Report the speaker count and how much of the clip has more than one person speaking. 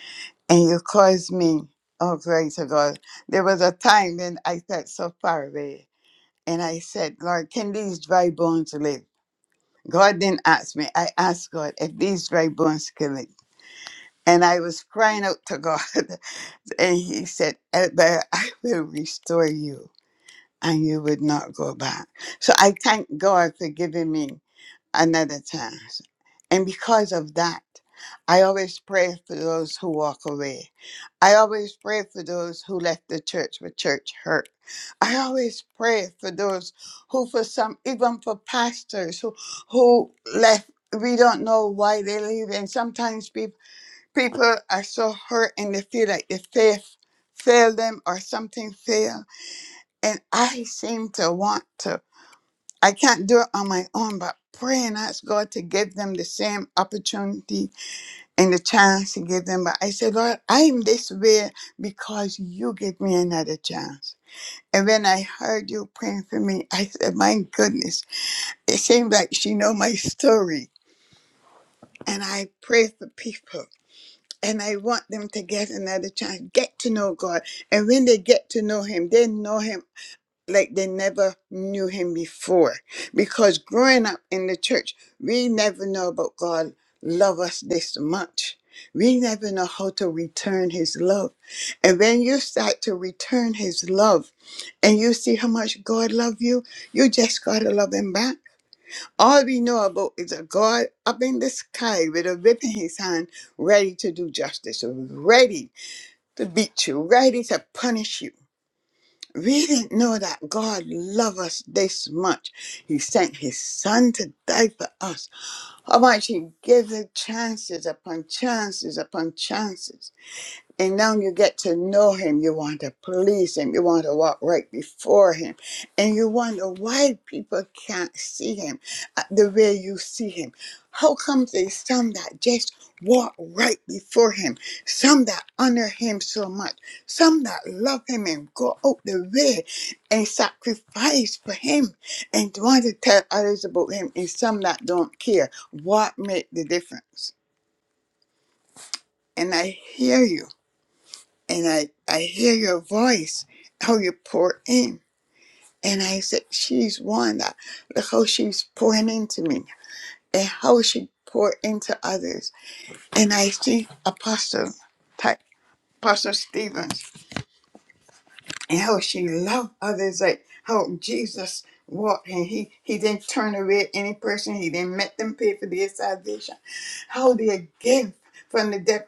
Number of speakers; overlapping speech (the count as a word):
one, no overlap